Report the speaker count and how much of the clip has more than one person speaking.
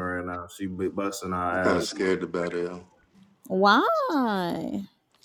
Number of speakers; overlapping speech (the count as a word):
three, about 8%